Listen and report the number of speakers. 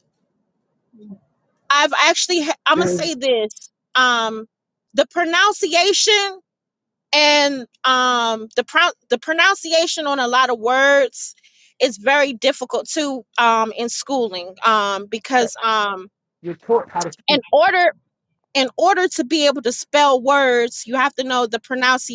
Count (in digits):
2